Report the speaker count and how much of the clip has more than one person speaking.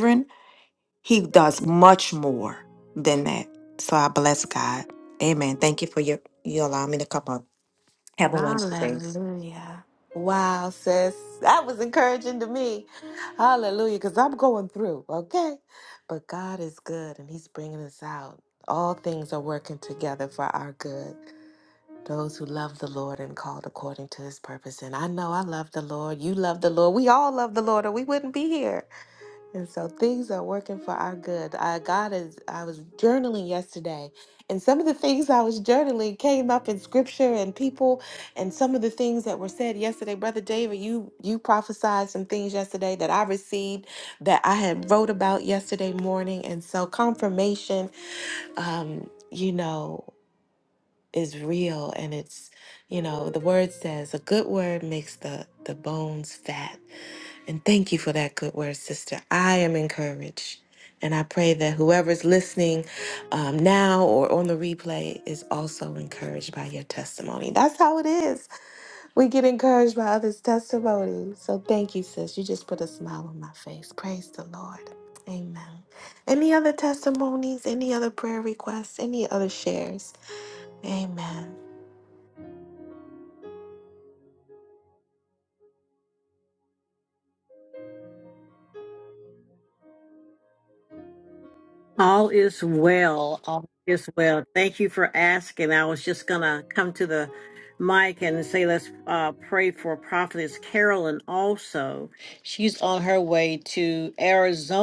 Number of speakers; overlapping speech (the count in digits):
3, about 1%